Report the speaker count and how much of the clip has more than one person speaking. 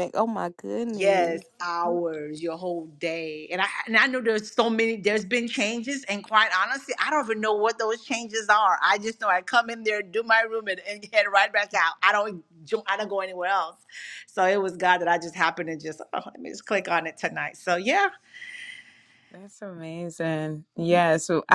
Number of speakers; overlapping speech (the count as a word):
three, about 2%